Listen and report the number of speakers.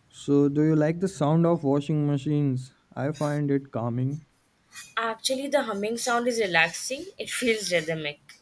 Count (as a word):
two